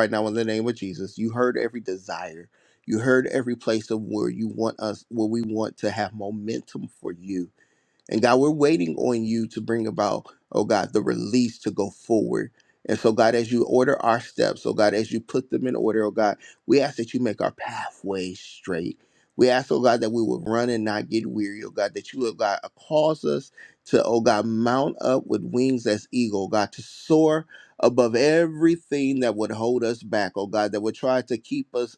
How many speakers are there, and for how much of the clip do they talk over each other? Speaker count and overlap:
1, no overlap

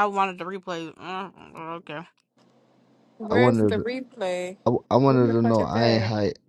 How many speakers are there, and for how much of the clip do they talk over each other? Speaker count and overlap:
3, about 25%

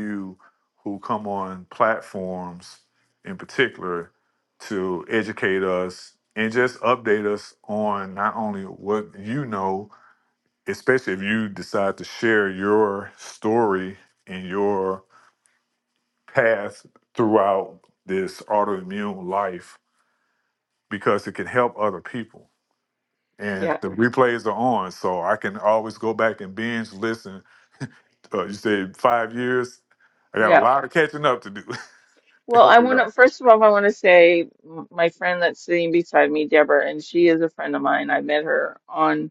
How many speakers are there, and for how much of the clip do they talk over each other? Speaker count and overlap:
2, about 3%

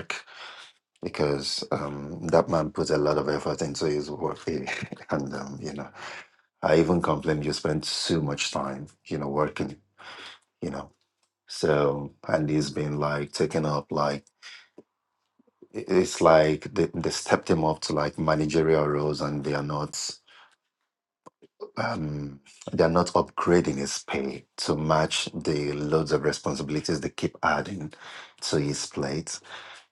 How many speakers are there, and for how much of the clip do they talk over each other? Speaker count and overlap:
1, no overlap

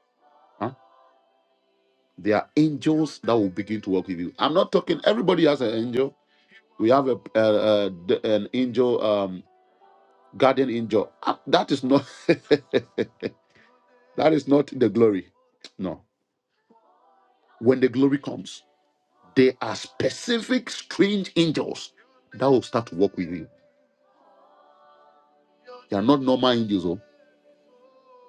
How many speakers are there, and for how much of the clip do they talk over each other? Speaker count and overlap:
1, no overlap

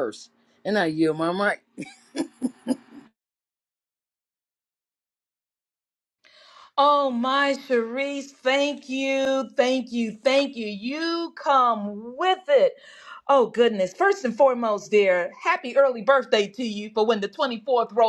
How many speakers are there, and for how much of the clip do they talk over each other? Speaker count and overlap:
2, no overlap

